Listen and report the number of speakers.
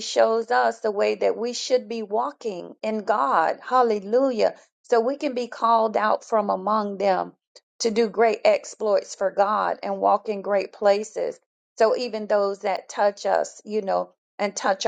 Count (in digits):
1